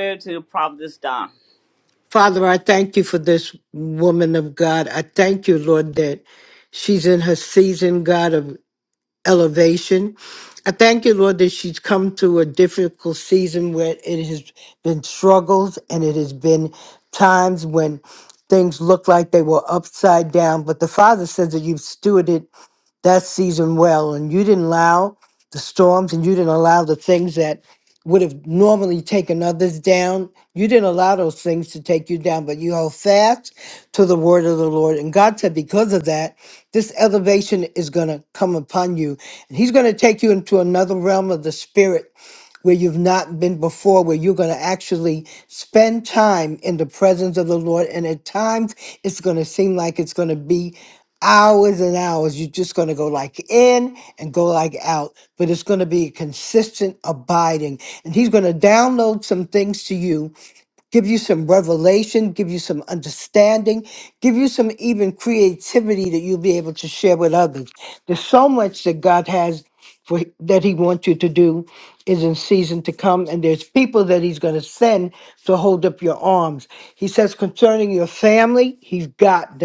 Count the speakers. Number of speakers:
2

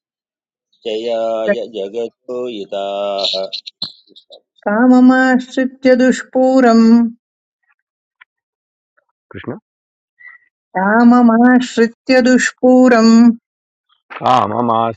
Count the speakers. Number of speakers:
3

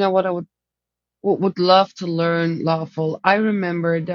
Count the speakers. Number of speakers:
1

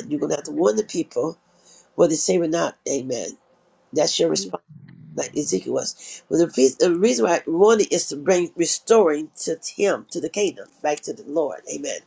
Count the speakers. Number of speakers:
1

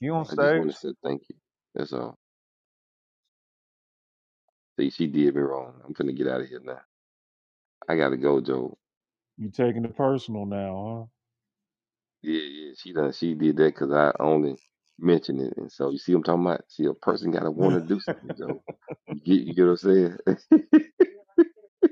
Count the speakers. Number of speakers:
2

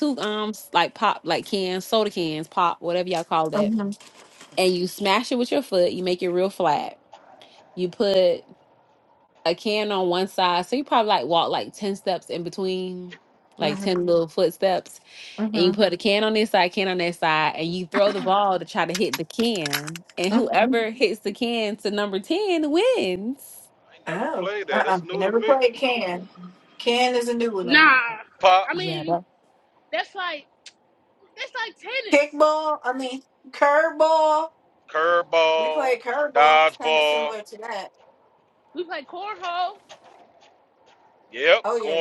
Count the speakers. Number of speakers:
4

